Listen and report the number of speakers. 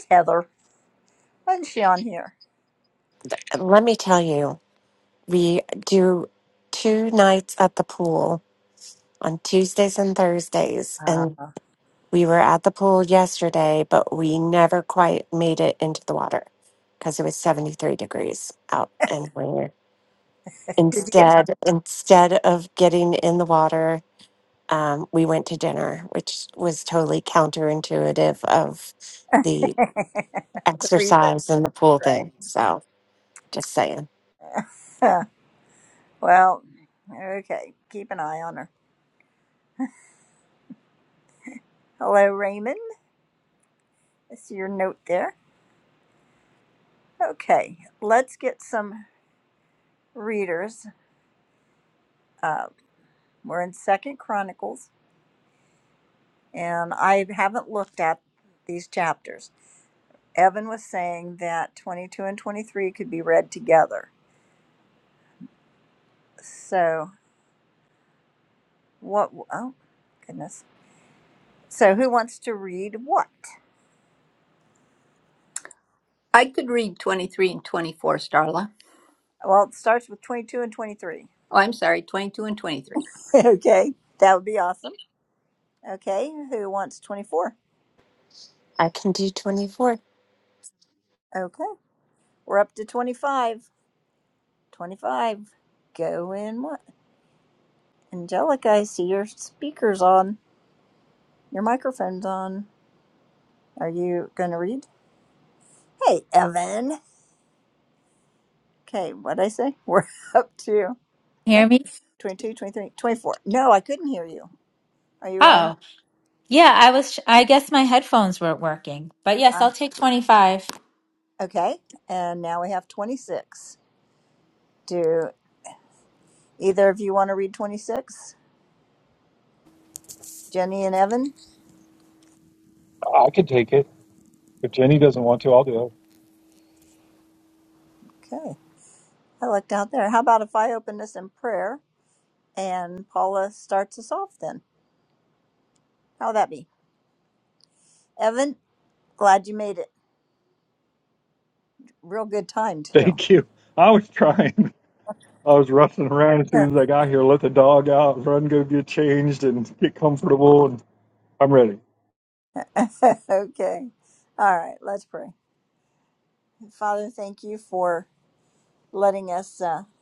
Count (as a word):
five